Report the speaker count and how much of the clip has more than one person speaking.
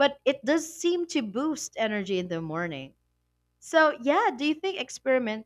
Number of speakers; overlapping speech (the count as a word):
one, no overlap